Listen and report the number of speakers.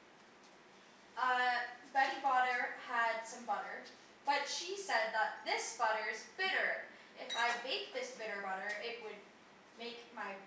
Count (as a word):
one